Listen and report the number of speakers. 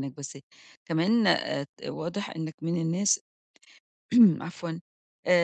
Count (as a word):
one